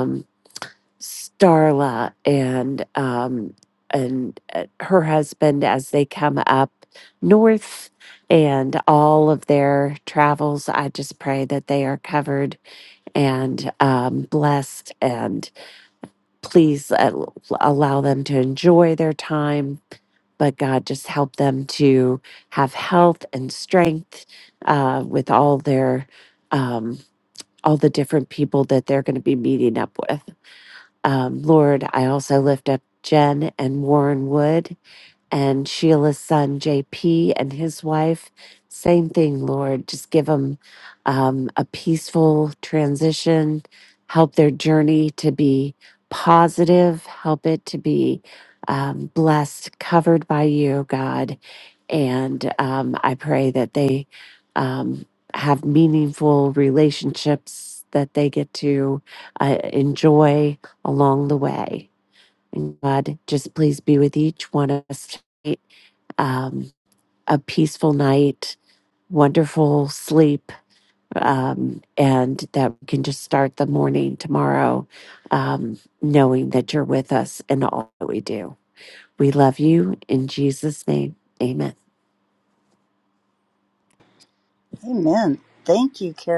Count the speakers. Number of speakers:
two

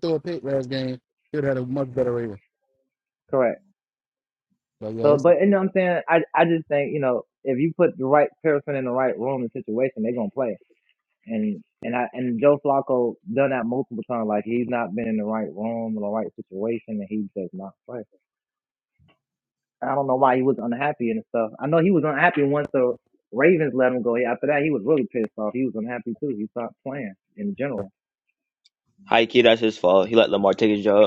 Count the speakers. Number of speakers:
three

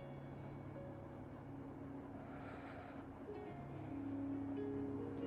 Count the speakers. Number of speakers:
zero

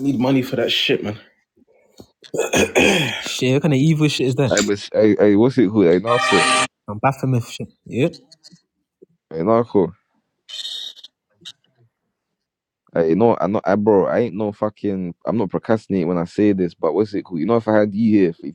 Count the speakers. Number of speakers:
three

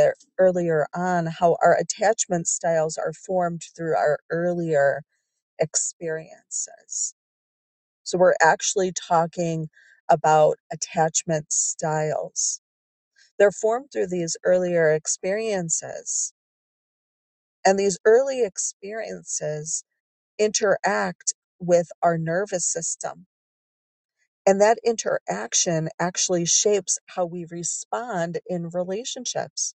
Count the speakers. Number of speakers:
one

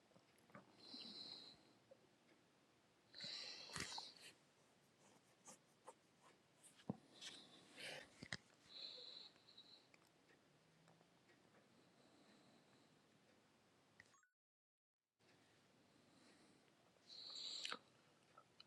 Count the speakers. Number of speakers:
zero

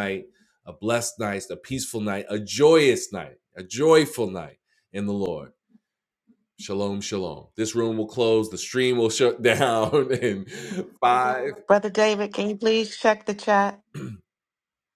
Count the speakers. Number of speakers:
two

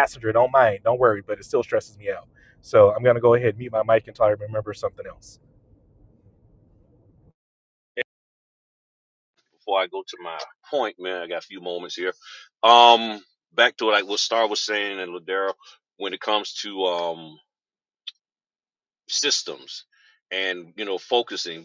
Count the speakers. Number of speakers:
two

